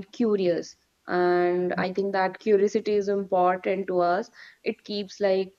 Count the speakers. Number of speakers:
1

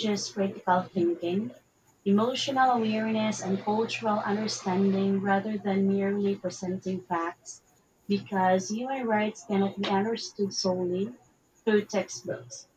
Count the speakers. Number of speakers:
1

